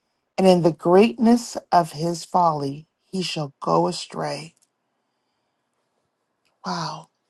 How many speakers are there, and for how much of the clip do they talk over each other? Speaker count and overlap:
one, no overlap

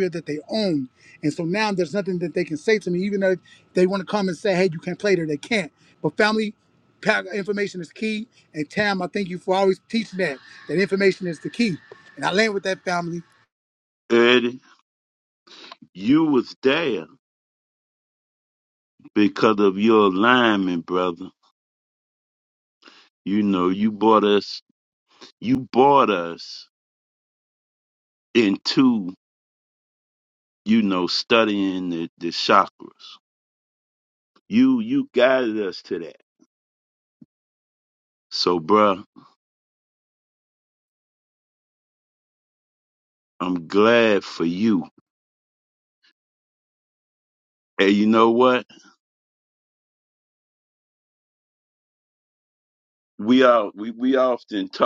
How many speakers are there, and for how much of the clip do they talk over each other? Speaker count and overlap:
two, no overlap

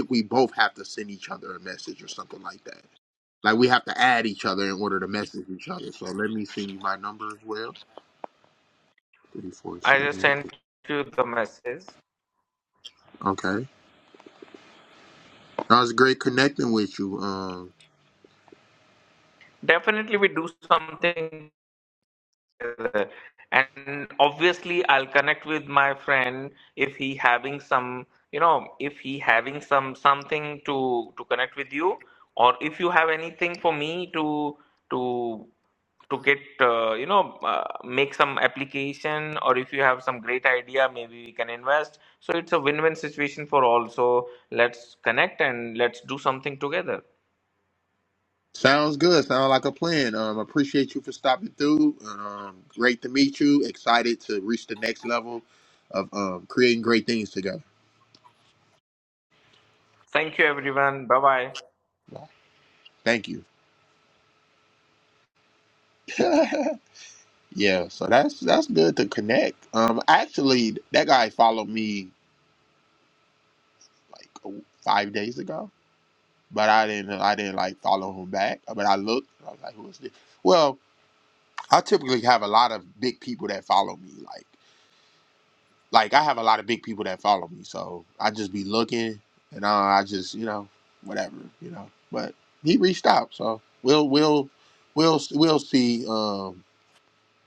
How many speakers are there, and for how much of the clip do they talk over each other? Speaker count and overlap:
two, about 1%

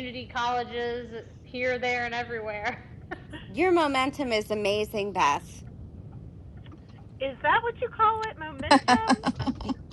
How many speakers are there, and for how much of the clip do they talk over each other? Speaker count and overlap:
three, no overlap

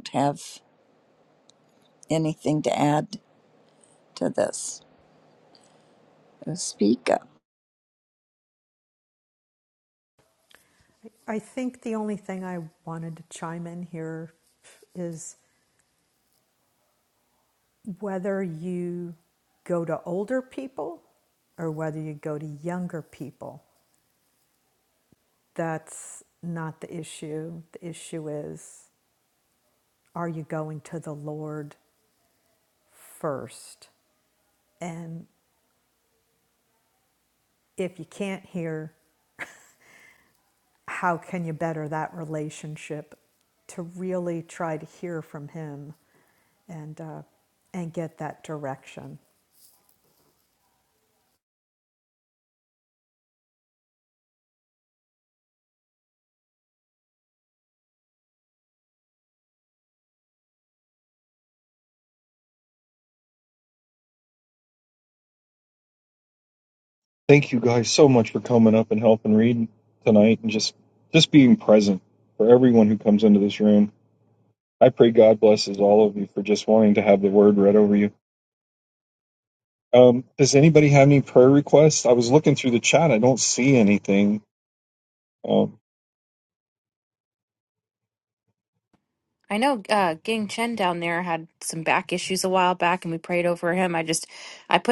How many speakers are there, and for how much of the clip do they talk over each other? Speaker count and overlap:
four, no overlap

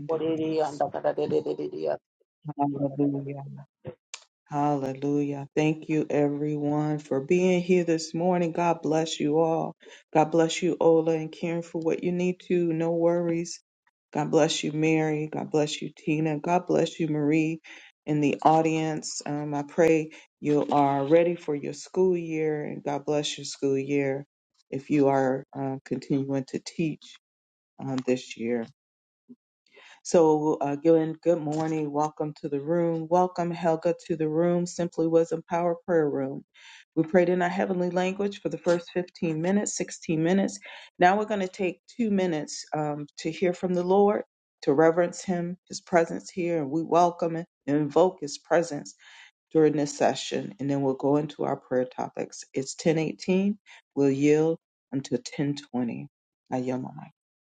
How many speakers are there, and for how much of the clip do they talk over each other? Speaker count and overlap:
two, about 1%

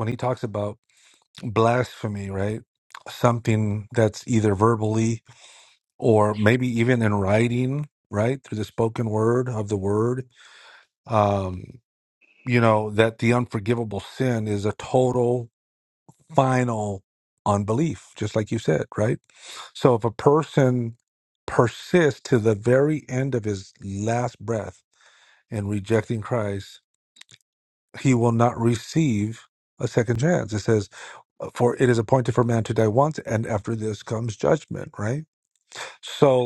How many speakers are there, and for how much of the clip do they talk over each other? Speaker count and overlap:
one, no overlap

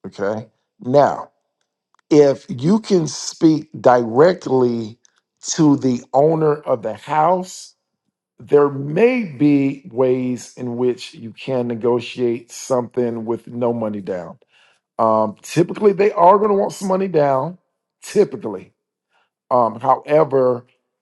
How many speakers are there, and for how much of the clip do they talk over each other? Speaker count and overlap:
one, no overlap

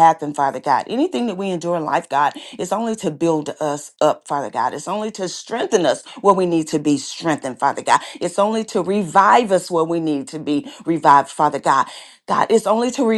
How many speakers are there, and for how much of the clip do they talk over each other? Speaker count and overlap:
one, no overlap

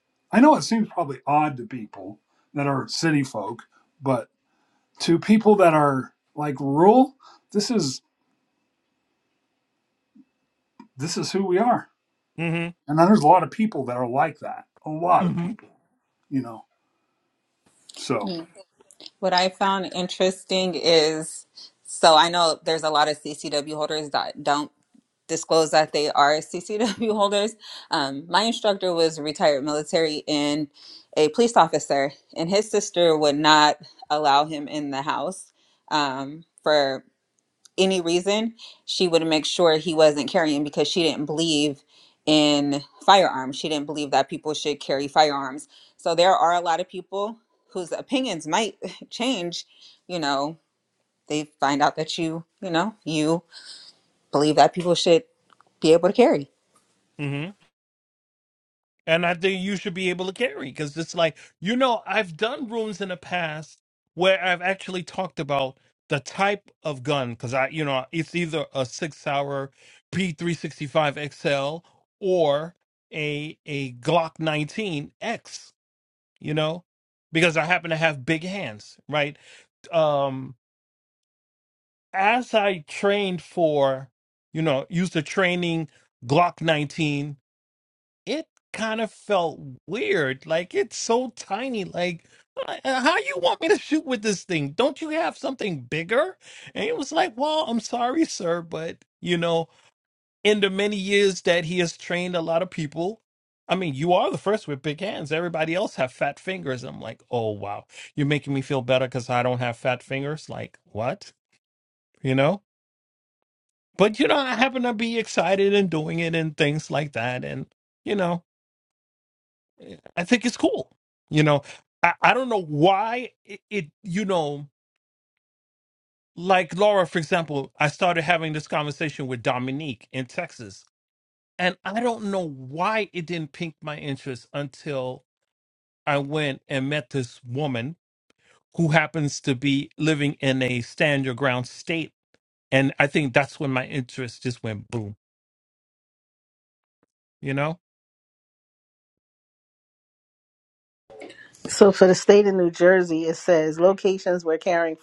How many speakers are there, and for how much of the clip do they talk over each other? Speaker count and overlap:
four, under 1%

